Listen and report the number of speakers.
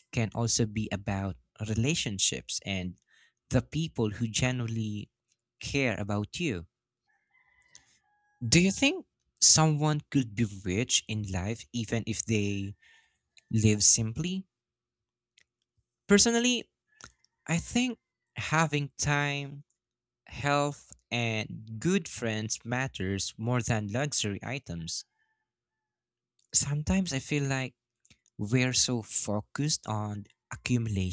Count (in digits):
1